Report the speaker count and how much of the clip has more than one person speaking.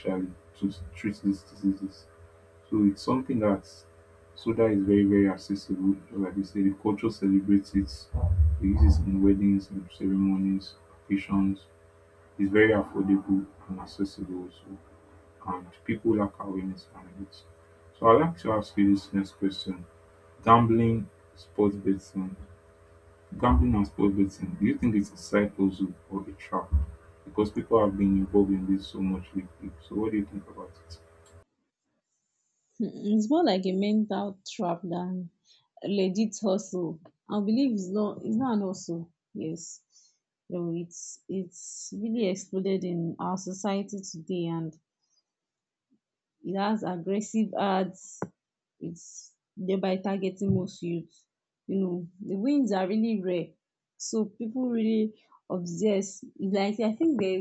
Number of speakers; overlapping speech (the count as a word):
two, no overlap